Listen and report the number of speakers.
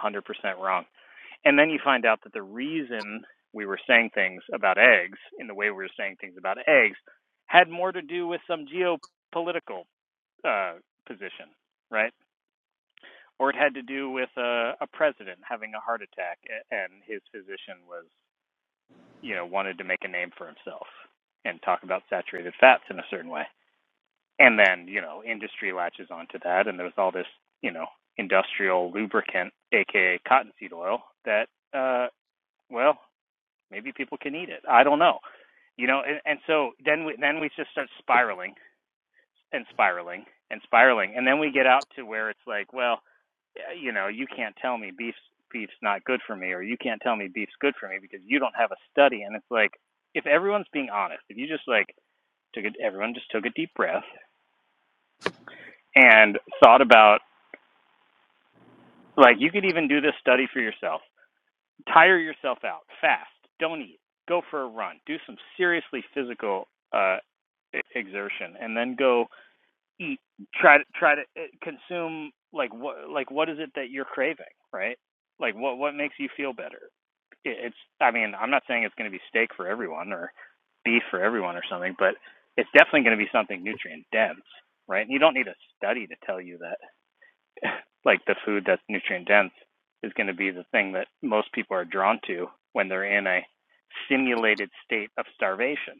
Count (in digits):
1